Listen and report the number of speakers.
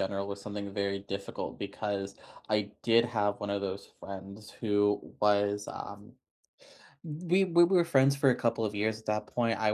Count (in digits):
1